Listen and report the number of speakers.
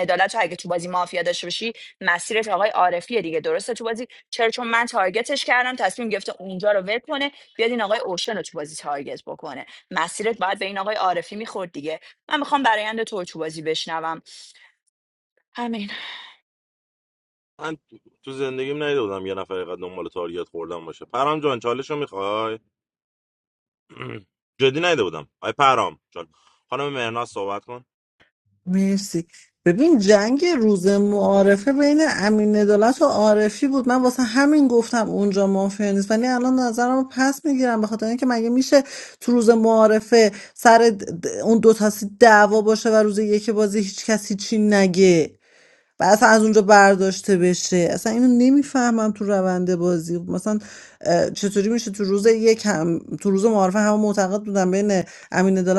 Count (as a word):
three